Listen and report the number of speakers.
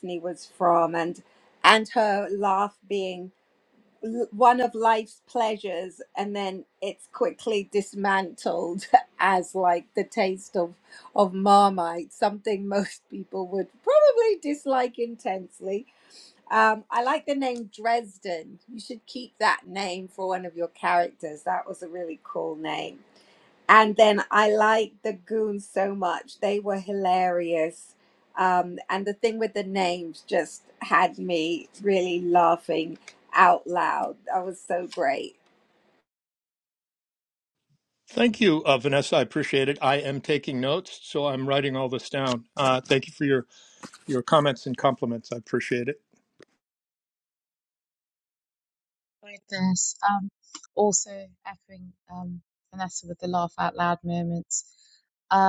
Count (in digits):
3